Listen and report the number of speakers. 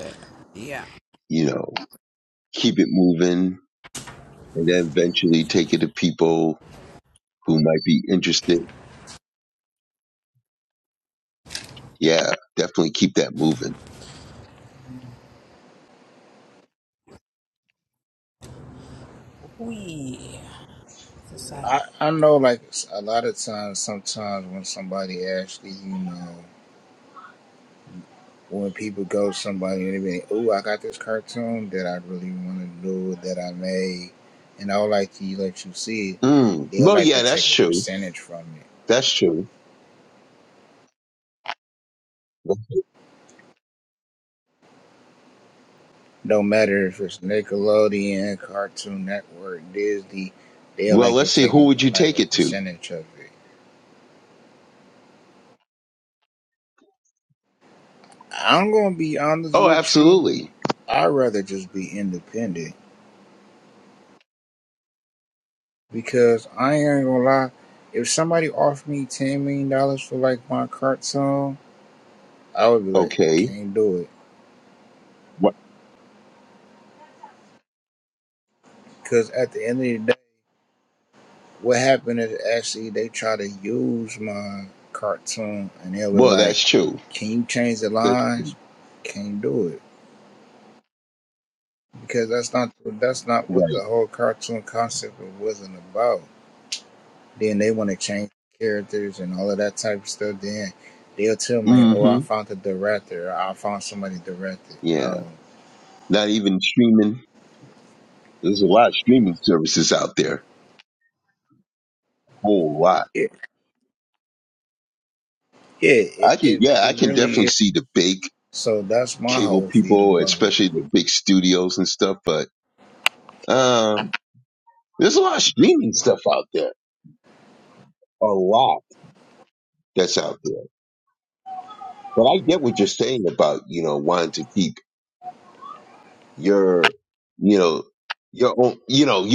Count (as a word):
three